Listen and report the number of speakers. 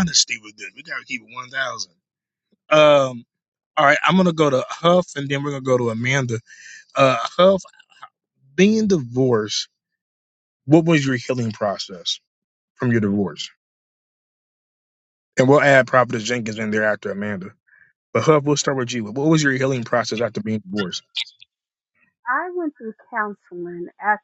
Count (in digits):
2